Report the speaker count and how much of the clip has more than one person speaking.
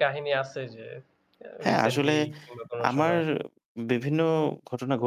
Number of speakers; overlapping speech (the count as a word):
two, about 17%